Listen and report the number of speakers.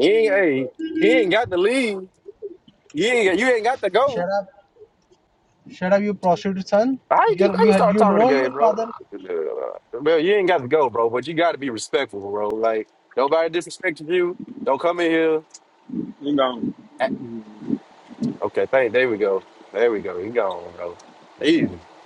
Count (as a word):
three